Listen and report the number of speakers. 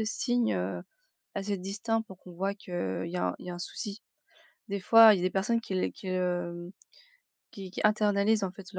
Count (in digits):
1